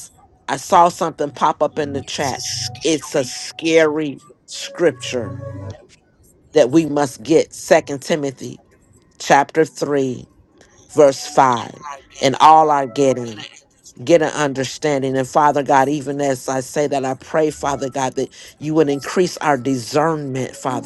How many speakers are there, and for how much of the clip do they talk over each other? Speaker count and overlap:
1, no overlap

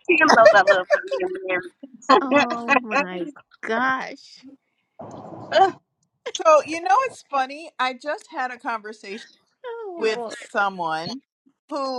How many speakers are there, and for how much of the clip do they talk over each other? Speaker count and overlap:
3, about 10%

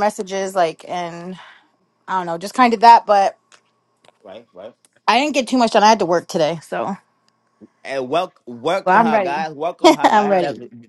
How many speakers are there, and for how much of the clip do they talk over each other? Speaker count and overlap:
2, about 10%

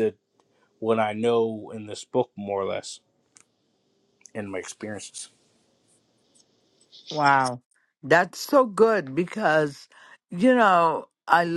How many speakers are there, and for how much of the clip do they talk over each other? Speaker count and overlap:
2, no overlap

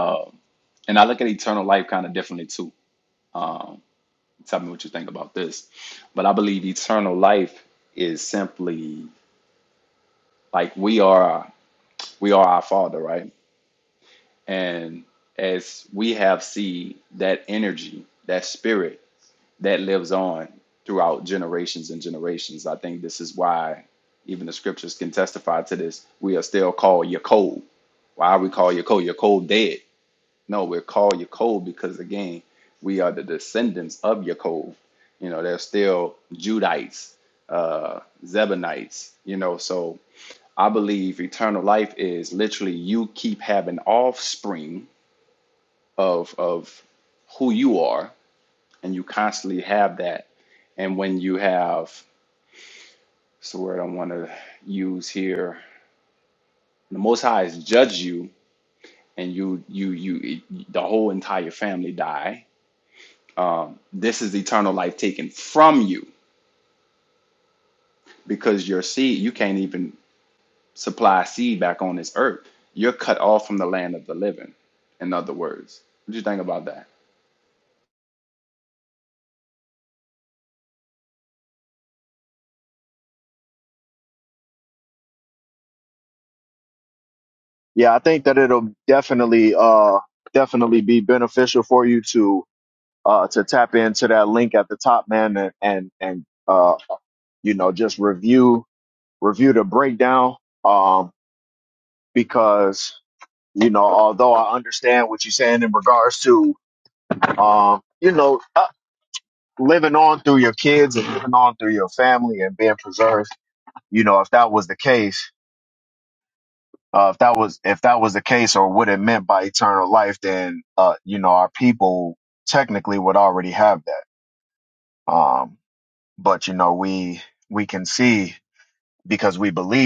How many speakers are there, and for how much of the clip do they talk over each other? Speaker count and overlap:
2, no overlap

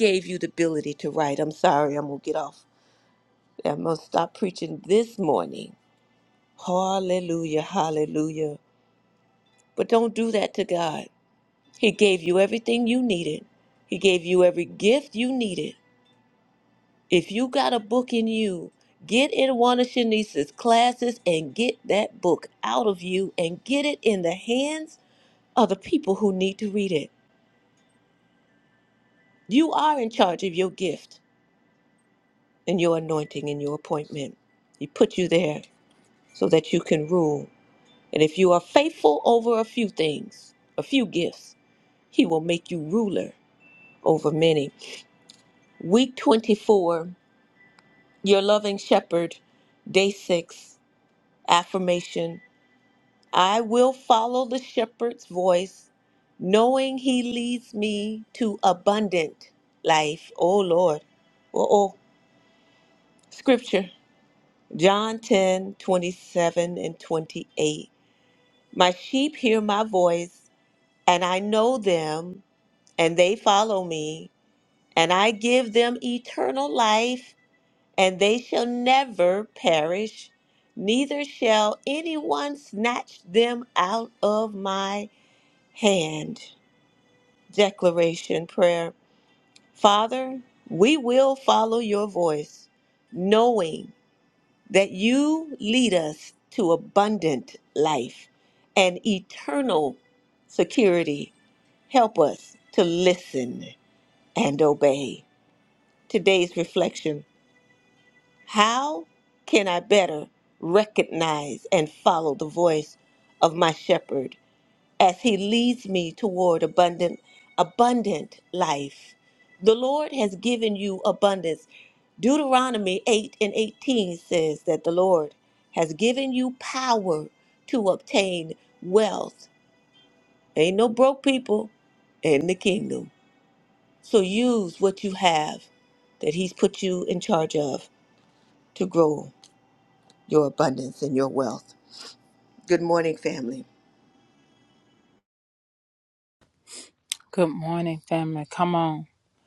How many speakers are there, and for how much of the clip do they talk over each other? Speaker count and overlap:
2, no overlap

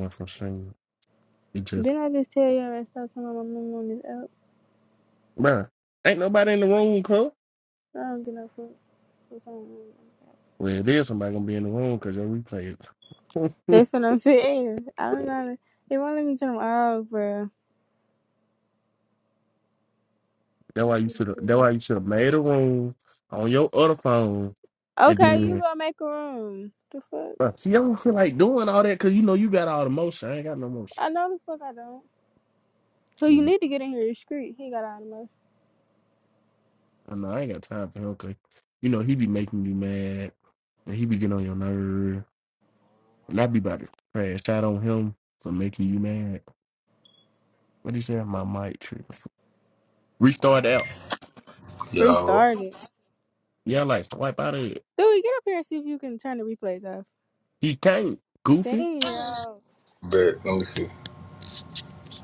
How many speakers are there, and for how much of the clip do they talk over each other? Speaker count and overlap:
3, about 3%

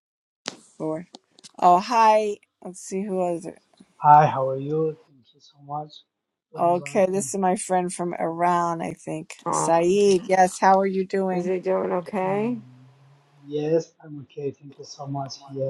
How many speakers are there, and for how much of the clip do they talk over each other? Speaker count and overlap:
3, about 8%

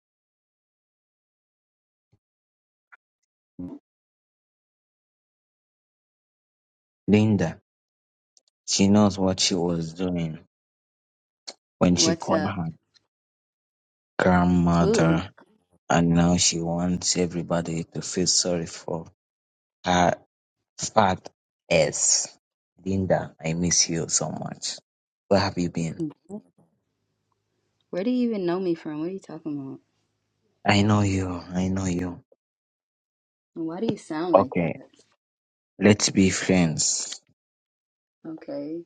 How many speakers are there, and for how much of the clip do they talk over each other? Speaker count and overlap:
2, about 3%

